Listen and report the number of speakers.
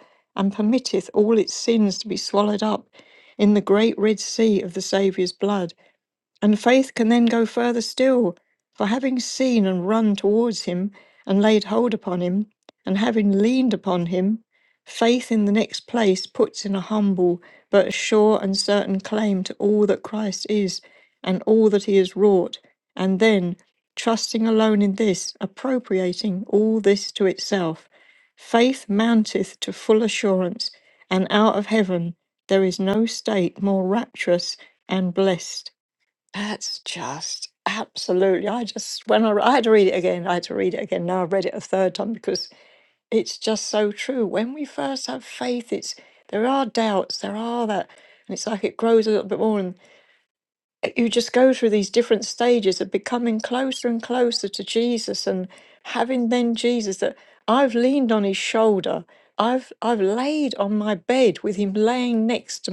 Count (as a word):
one